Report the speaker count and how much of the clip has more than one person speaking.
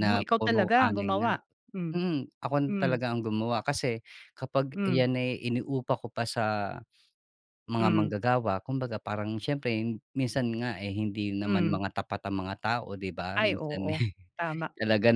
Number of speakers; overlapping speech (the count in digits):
2, about 21%